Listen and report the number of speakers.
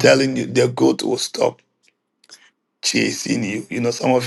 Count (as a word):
one